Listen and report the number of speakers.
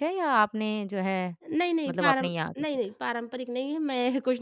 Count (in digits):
2